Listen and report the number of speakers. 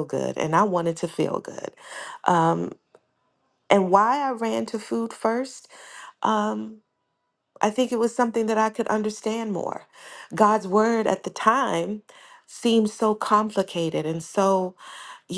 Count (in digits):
1